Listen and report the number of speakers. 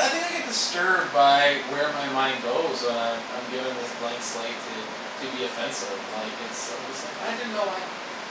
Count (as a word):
one